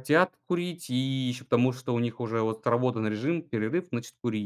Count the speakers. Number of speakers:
1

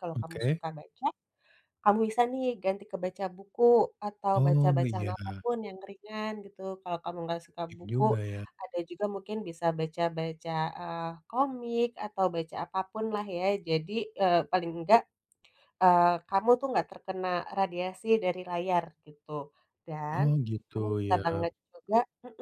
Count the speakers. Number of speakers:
2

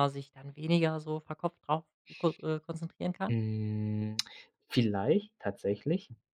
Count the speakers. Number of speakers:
2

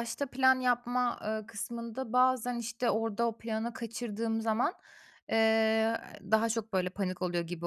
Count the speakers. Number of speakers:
1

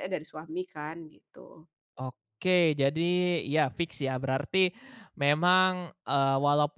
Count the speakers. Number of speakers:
2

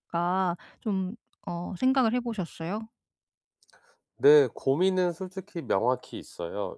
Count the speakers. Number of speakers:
2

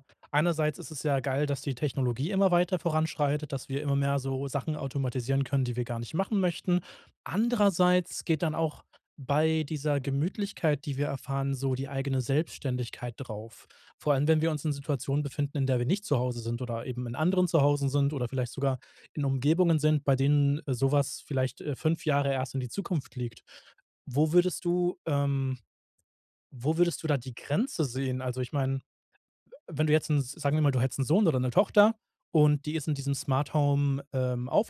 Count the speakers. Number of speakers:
1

